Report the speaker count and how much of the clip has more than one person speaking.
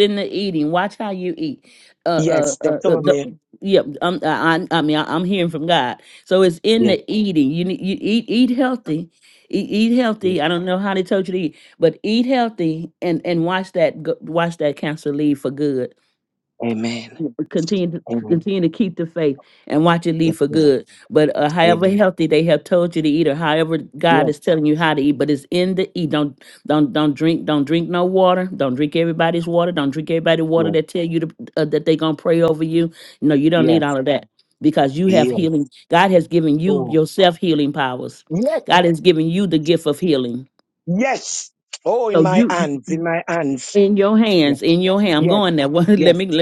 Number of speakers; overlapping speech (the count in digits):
2, about 10%